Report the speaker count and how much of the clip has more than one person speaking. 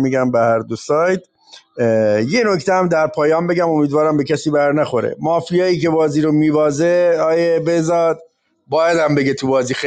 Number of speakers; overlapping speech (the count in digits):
1, no overlap